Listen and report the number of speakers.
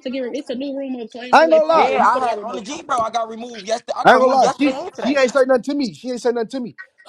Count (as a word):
three